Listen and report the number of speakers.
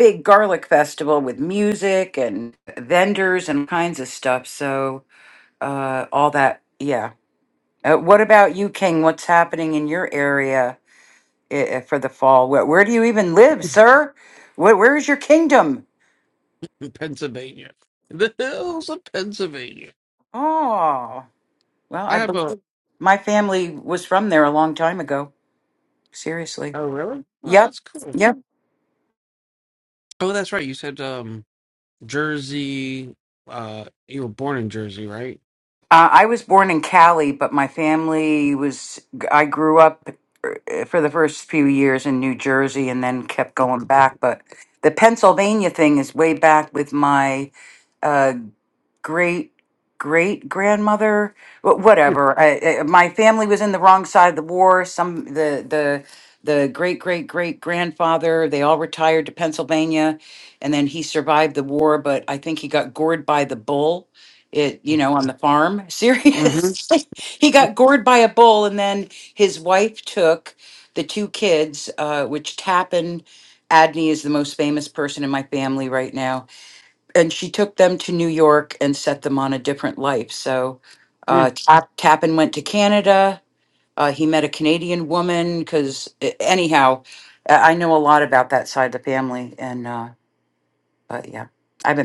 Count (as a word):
two